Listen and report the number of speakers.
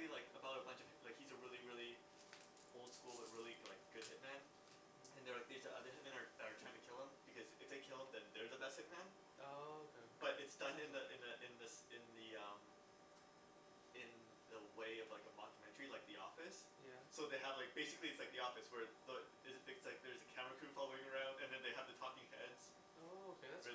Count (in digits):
2